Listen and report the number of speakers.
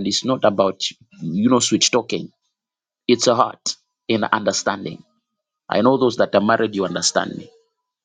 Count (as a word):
one